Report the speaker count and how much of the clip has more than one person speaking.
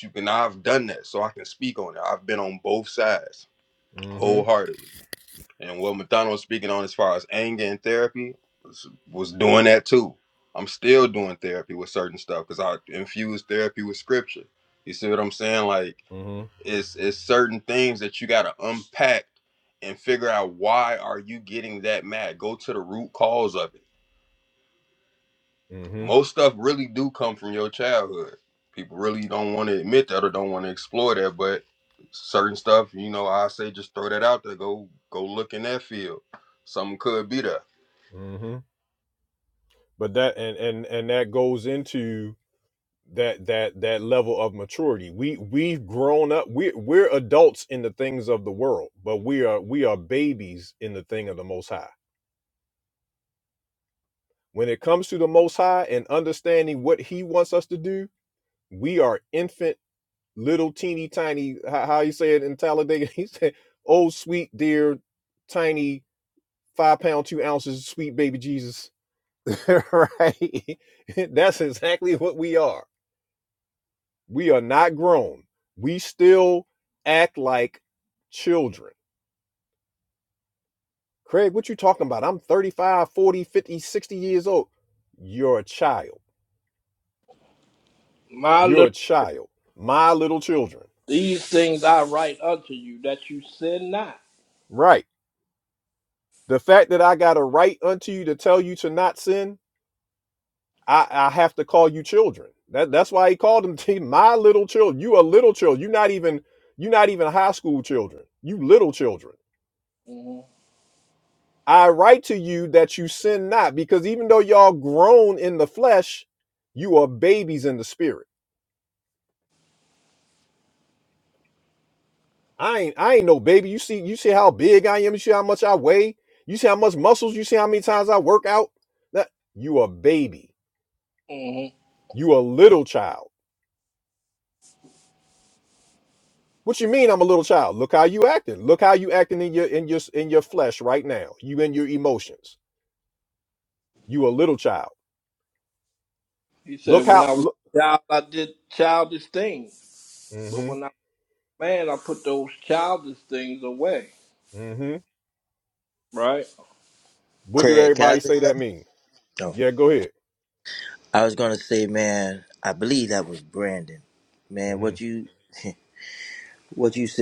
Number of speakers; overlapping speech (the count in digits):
4, about 2%